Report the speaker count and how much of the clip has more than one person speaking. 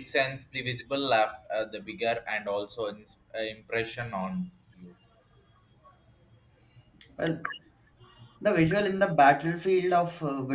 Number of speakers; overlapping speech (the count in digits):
2, no overlap